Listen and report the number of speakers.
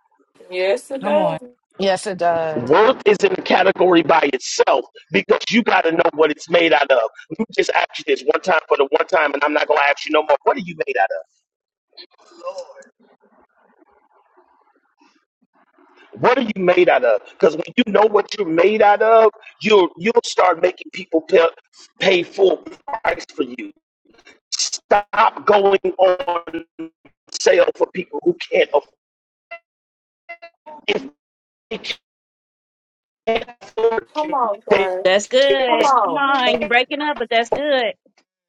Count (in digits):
4